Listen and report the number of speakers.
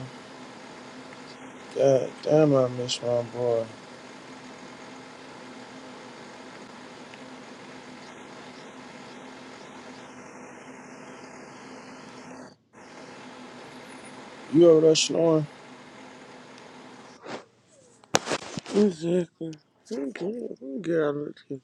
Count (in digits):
2